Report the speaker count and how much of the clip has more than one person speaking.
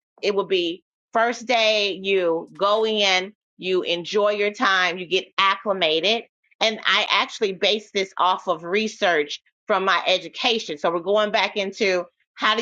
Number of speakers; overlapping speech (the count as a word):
one, no overlap